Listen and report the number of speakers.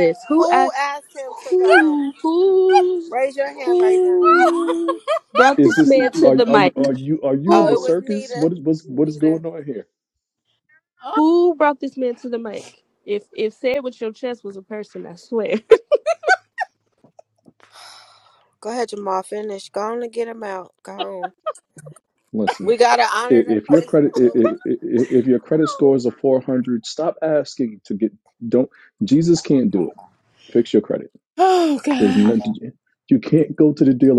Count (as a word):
four